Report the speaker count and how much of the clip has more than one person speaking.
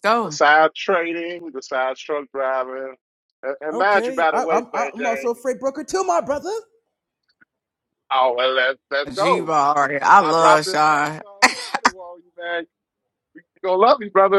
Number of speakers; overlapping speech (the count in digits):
3, about 23%